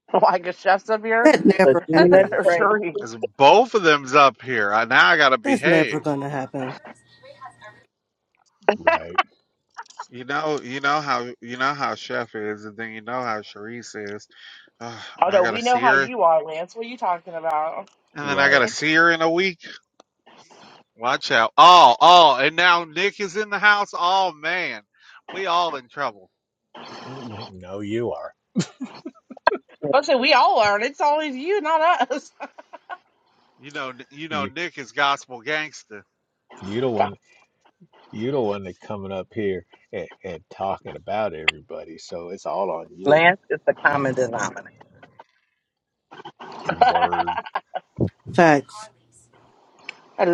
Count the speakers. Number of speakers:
5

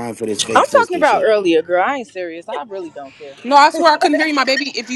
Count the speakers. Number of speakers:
3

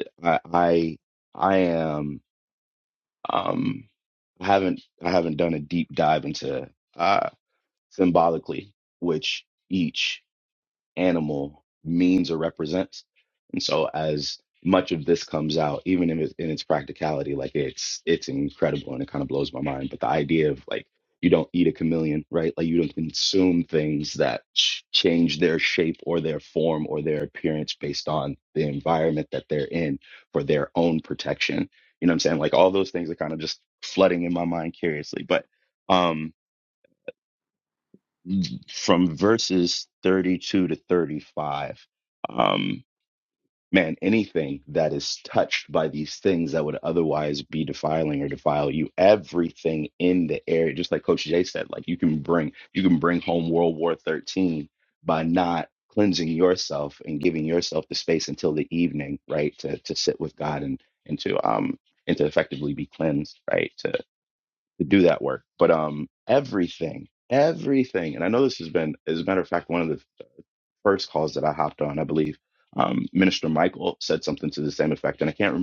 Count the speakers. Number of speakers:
1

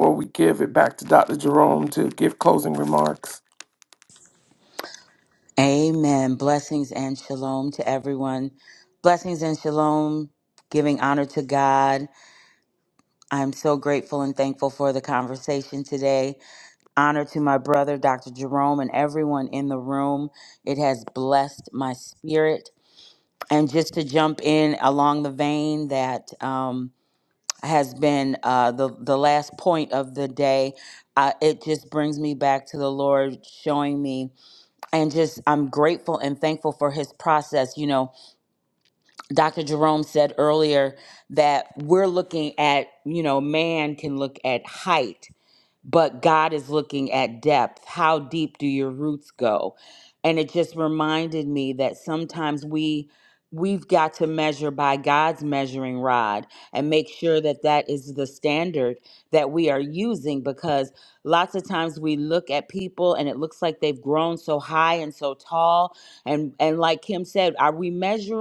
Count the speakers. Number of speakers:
2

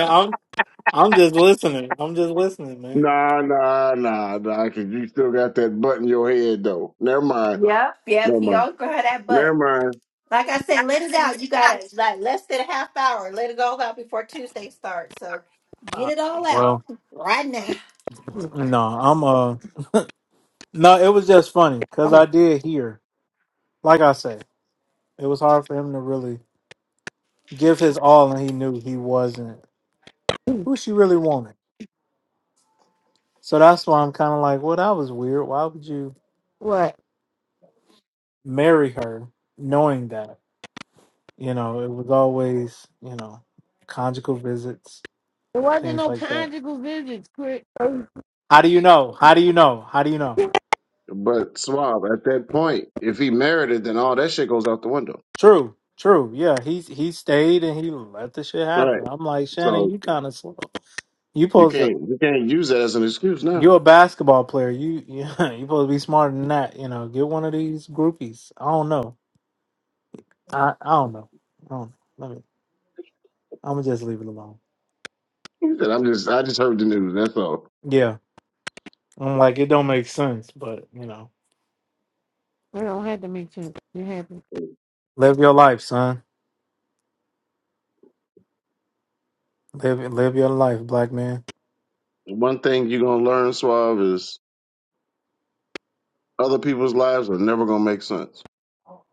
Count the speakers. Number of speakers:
4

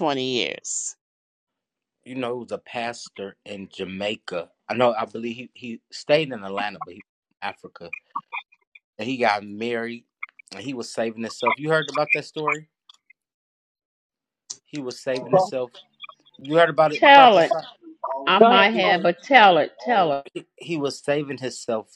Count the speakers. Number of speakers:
3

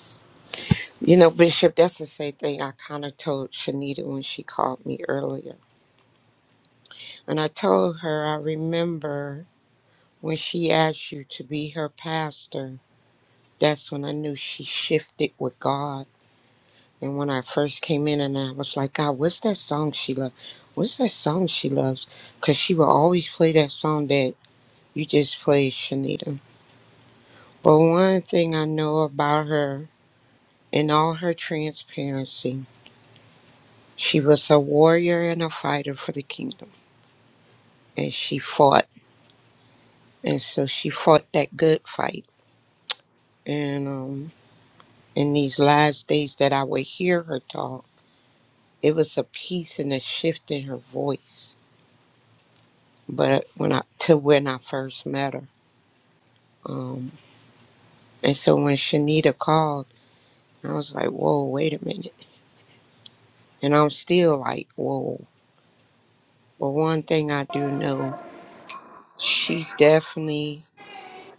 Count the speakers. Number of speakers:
1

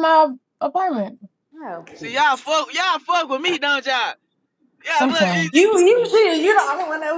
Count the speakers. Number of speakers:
3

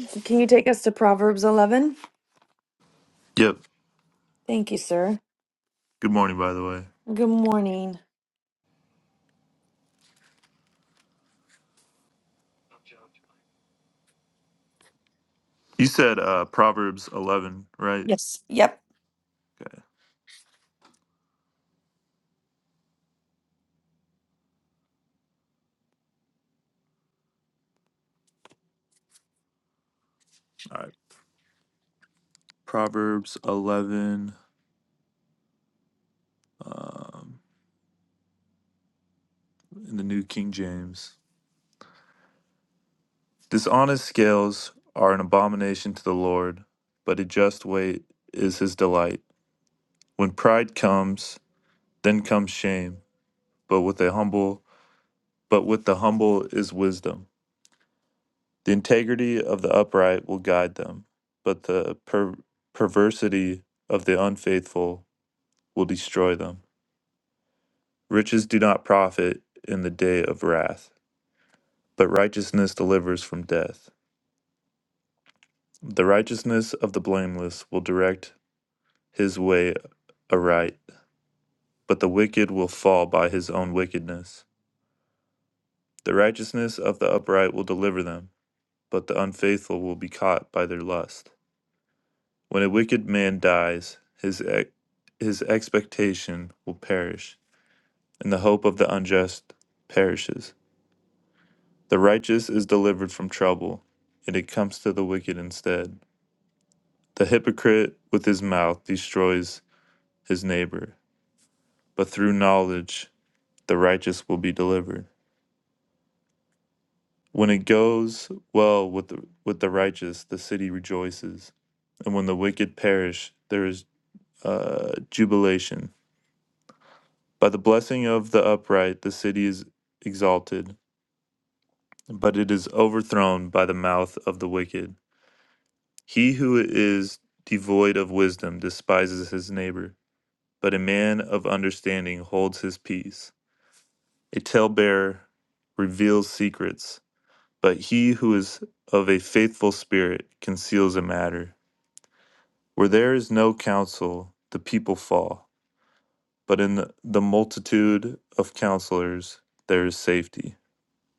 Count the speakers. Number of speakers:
2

